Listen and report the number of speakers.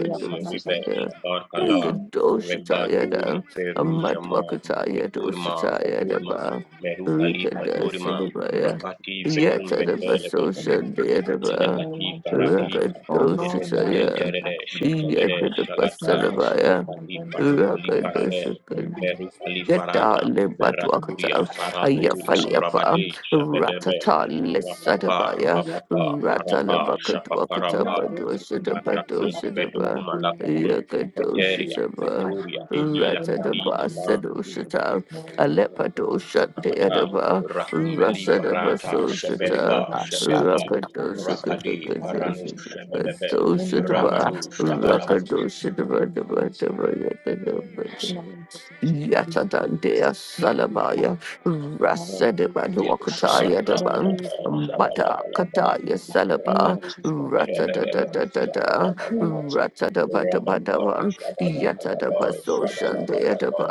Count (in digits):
3